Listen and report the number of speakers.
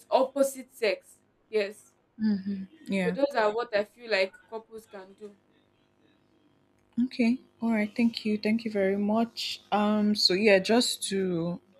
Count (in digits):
2